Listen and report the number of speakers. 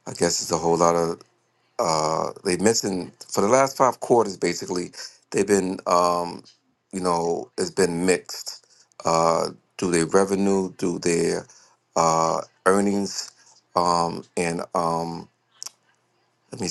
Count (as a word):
one